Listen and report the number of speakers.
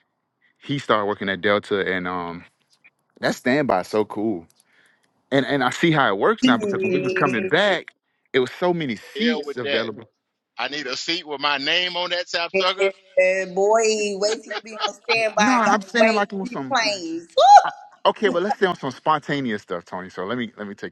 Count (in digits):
3